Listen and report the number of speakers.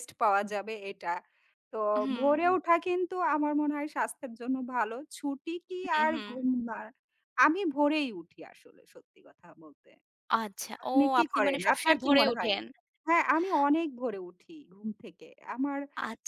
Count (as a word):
two